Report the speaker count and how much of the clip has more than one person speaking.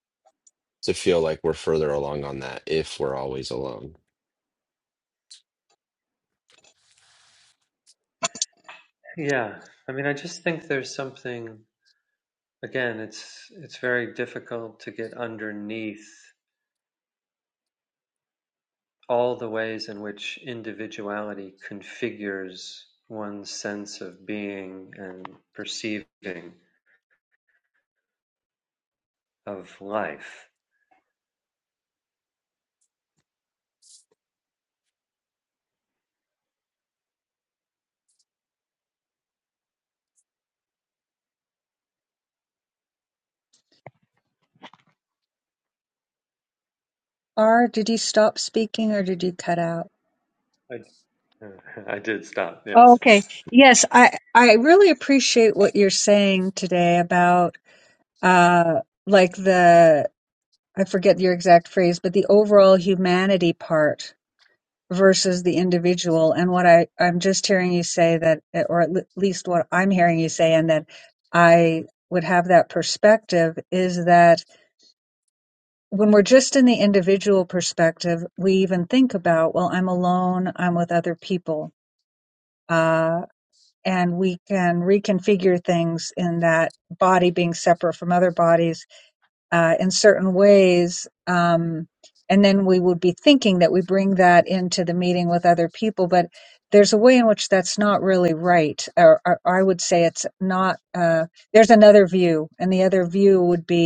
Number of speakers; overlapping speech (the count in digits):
3, under 1%